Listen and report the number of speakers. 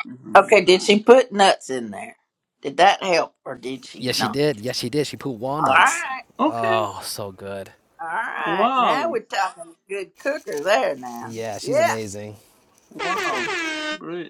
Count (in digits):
3